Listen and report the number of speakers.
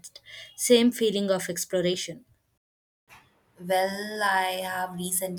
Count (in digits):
2